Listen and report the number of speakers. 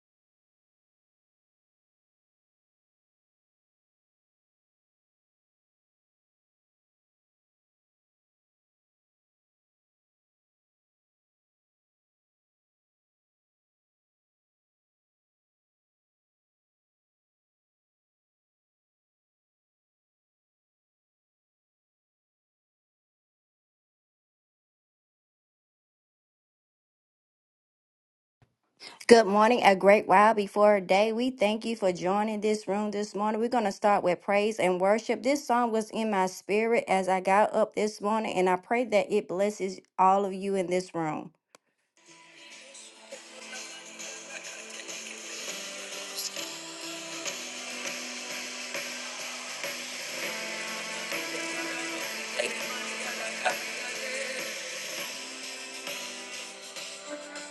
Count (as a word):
one